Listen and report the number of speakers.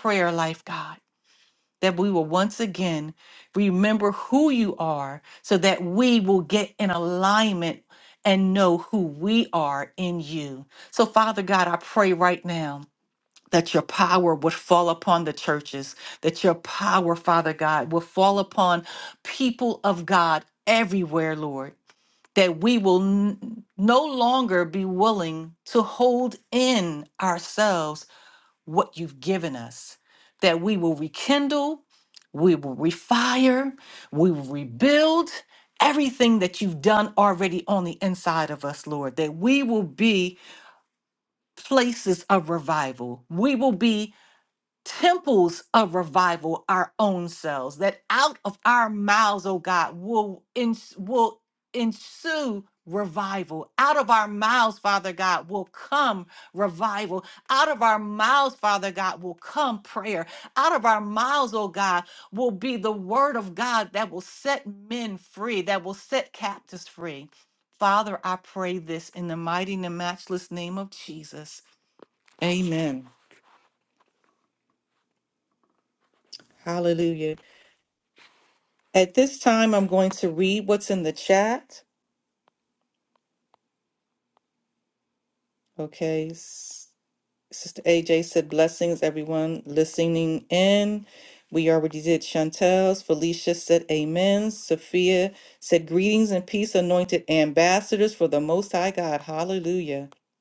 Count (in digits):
1